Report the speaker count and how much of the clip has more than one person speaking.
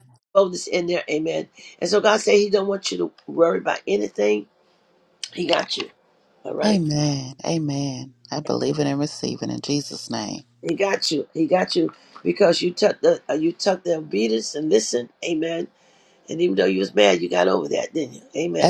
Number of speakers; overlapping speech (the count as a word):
two, about 1%